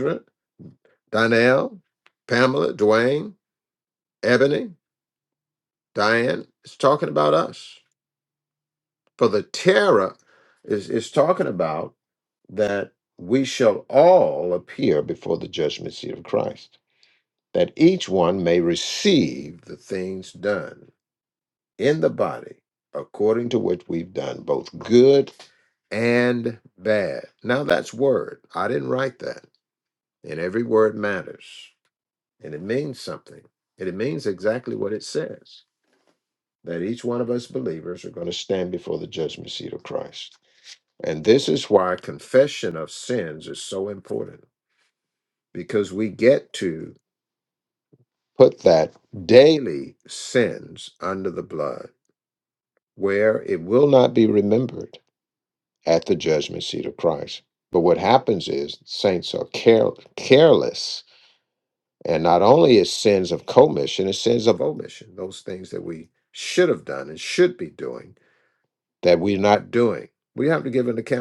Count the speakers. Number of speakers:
one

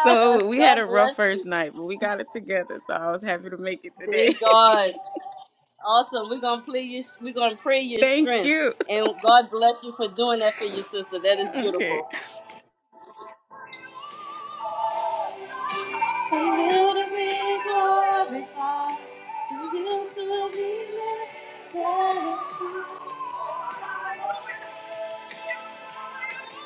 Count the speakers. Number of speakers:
two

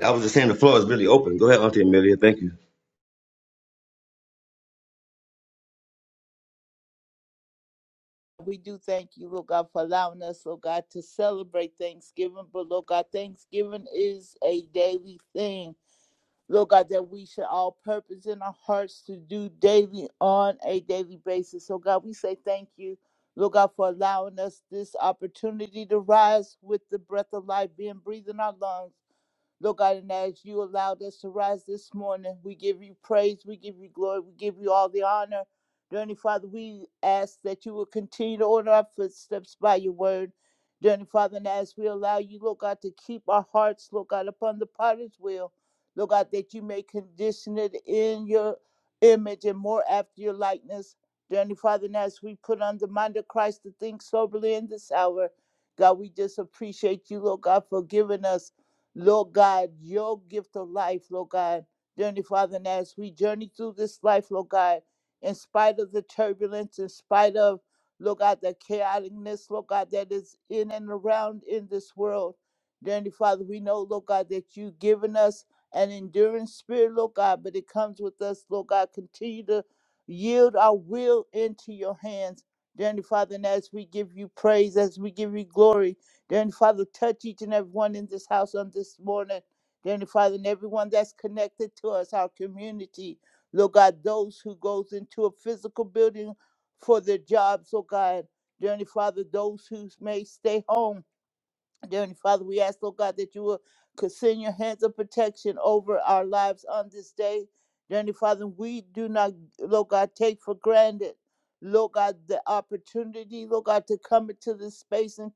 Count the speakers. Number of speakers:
two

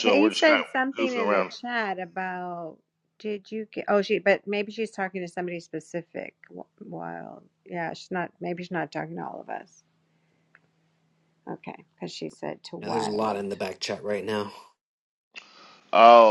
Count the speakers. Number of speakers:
three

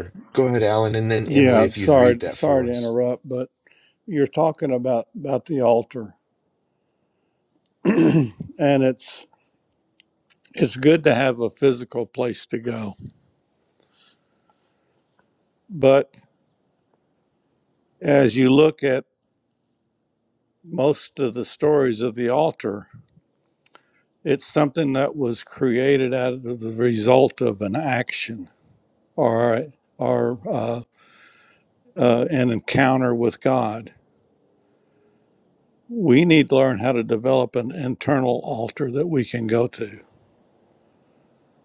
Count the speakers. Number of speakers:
two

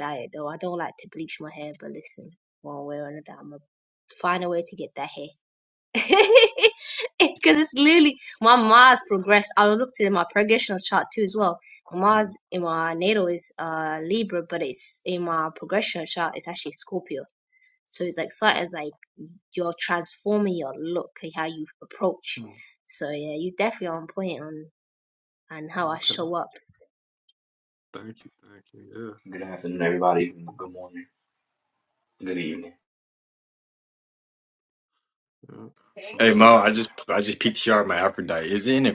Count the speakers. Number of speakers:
four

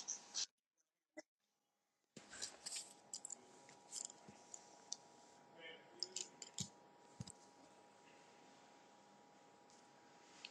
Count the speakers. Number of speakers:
zero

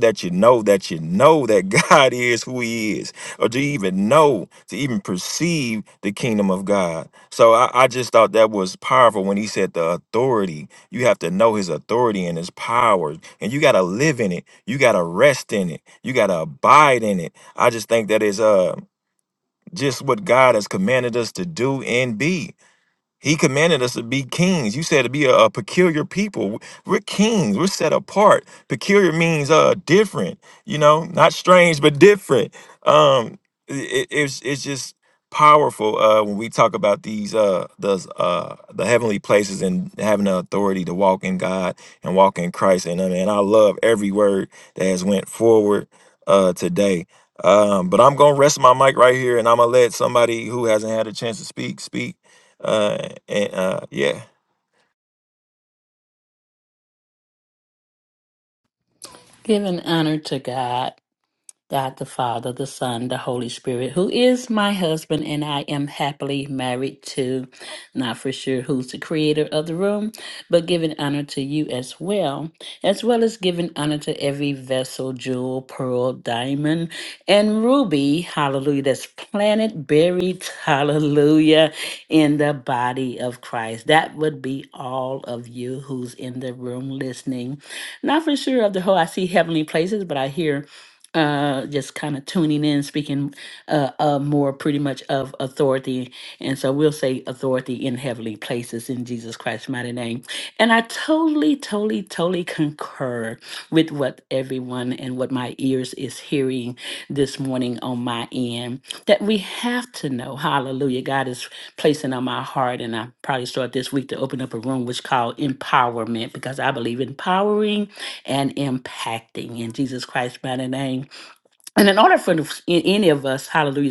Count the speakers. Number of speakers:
two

